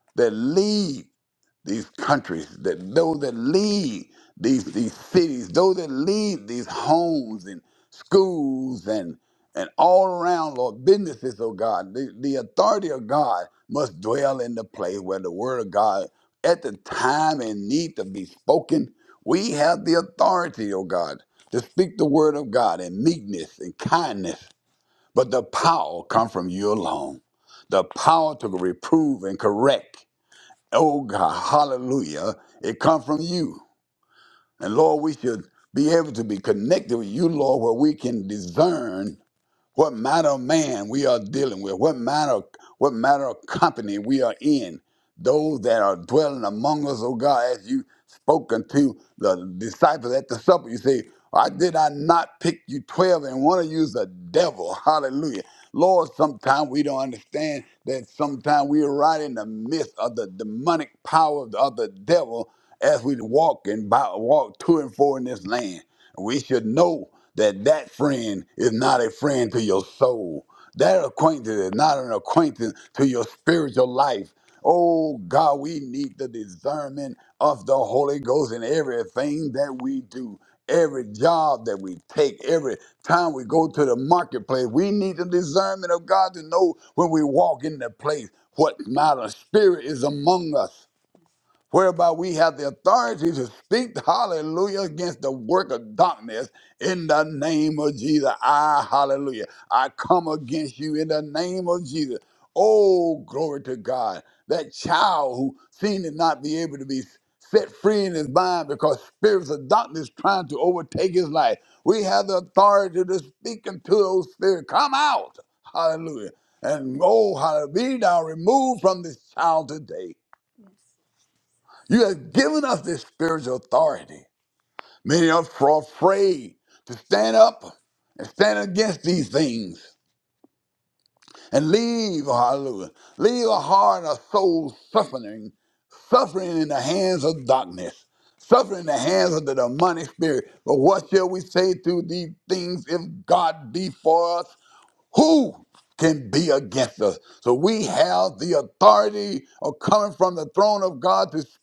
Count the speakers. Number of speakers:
1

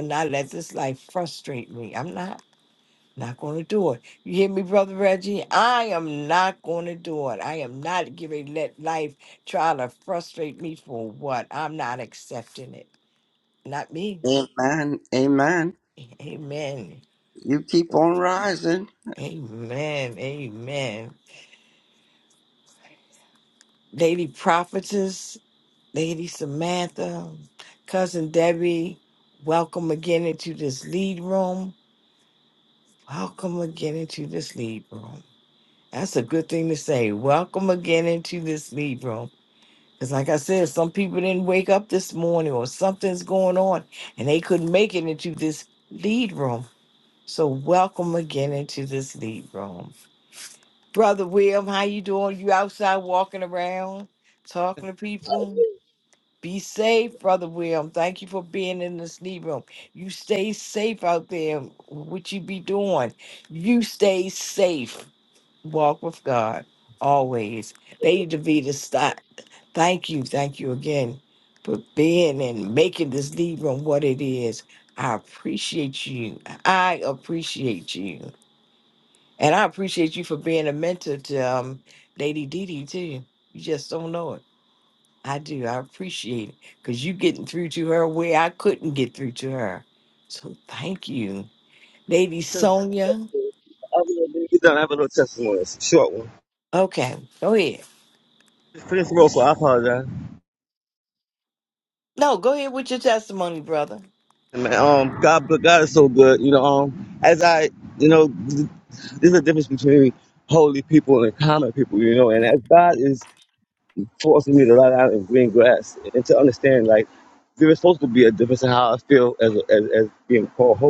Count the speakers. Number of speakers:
3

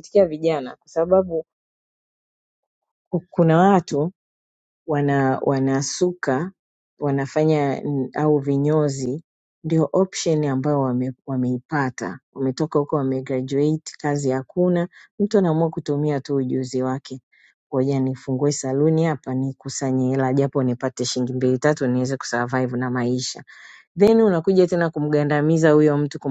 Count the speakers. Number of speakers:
1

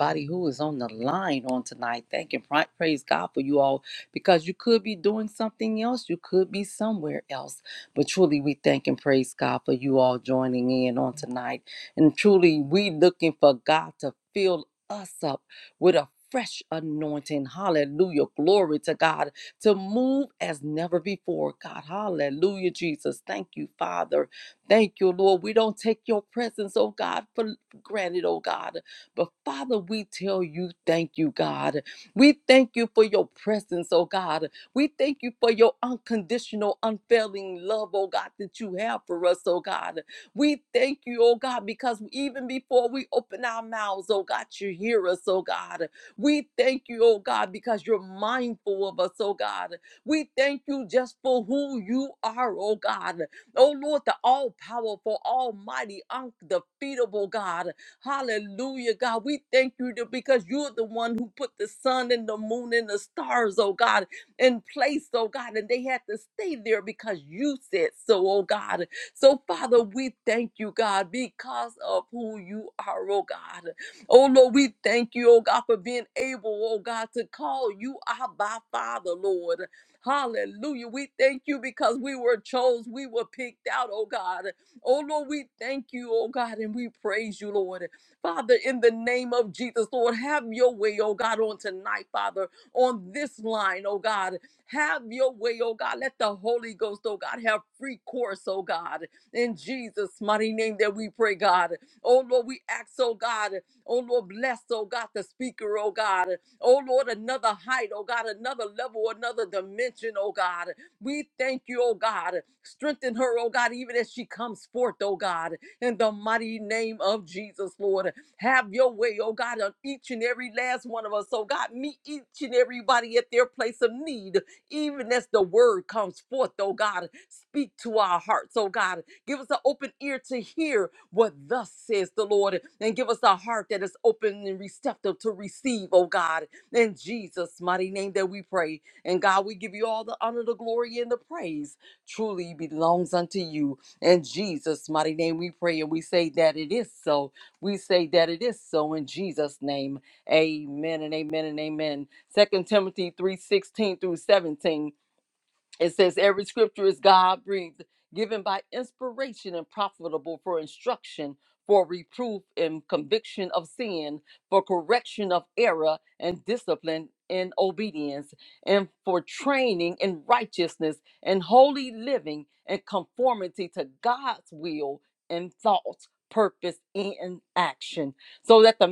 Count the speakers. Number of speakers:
1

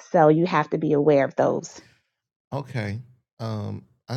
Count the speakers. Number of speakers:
2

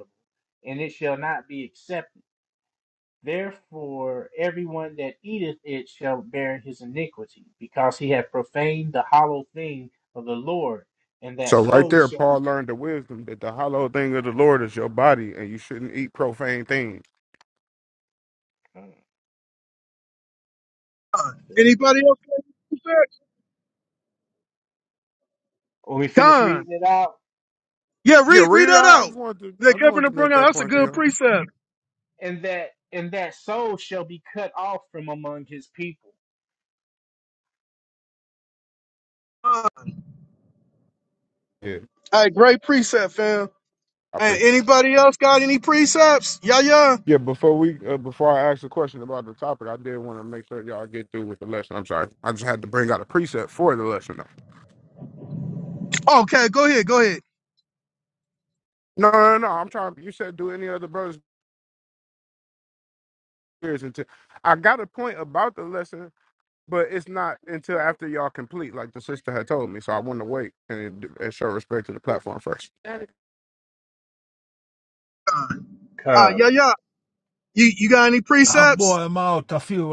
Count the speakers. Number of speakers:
4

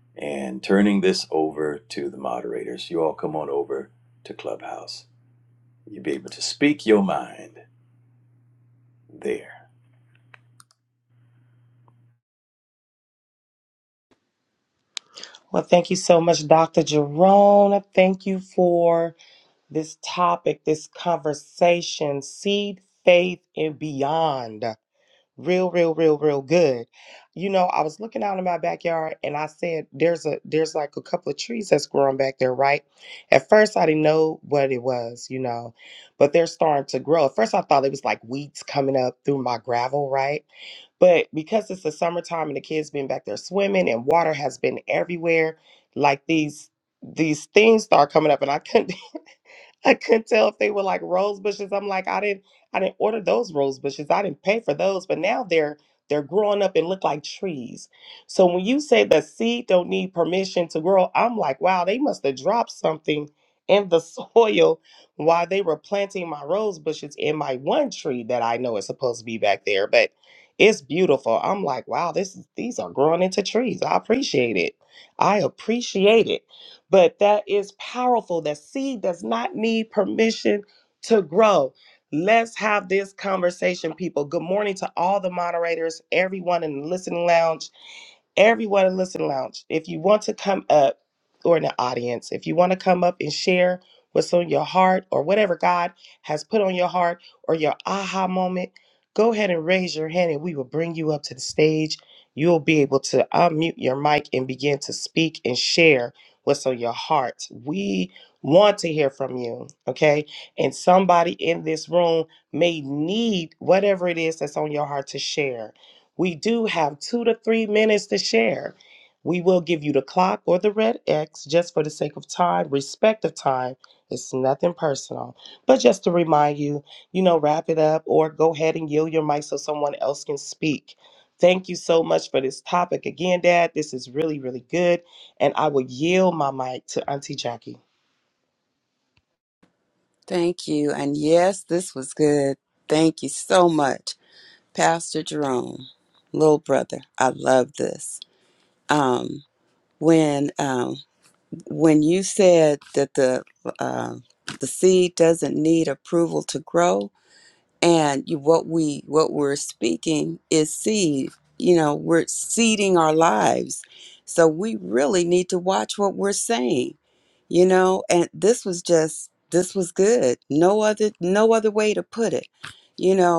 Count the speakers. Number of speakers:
3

